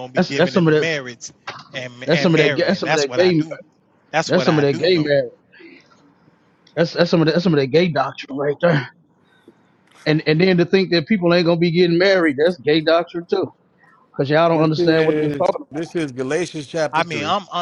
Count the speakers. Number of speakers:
three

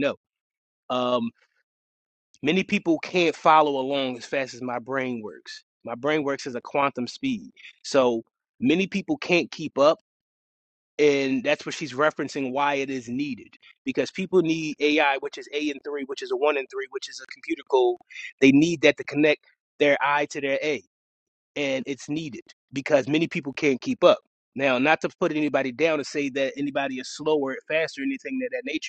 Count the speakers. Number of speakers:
one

